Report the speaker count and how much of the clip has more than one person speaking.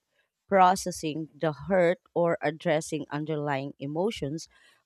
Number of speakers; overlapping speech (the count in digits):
1, no overlap